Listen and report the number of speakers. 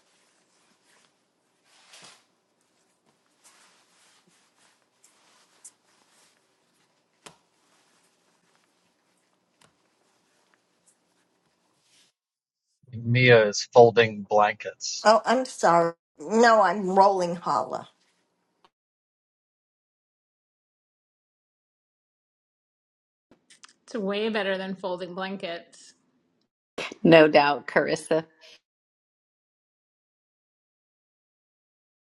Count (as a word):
four